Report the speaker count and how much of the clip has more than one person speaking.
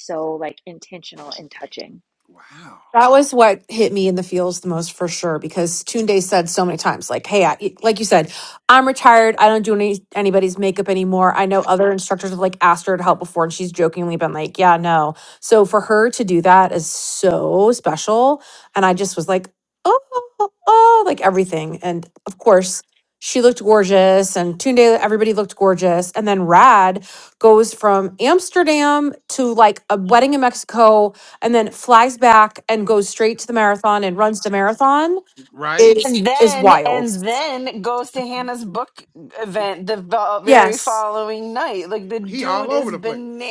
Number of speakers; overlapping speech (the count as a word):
four, about 6%